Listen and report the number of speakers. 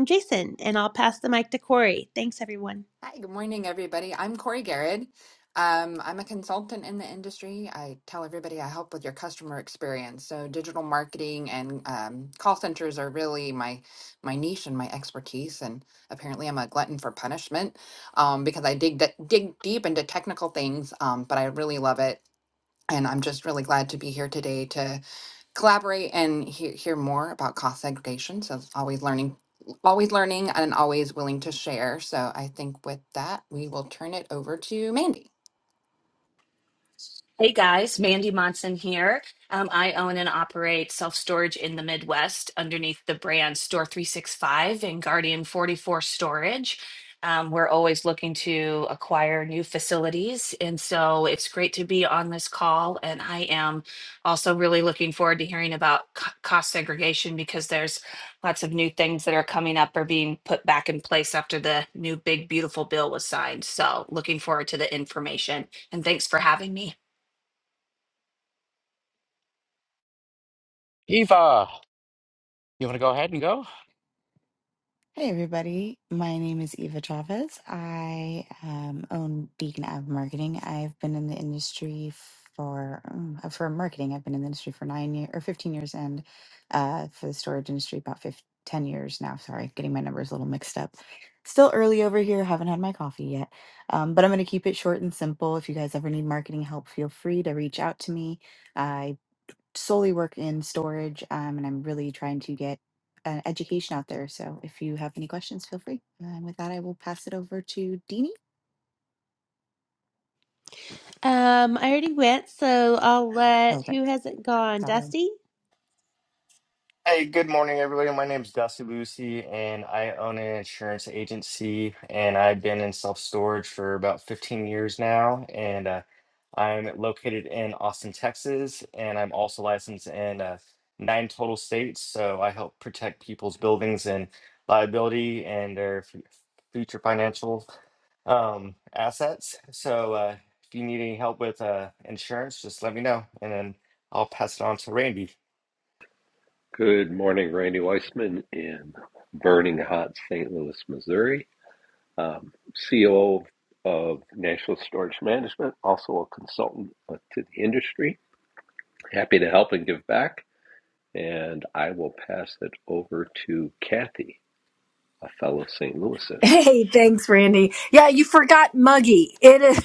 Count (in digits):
8